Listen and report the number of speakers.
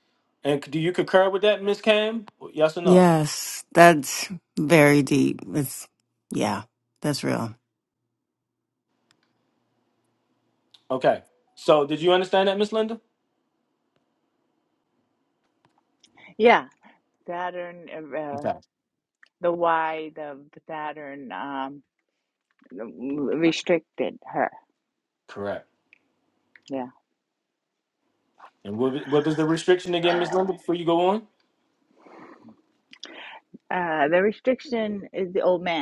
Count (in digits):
3